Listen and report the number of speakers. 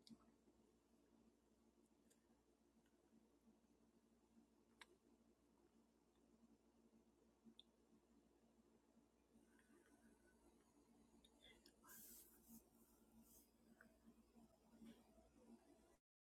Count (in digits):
0